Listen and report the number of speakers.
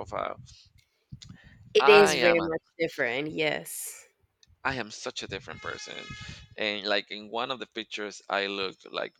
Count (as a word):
two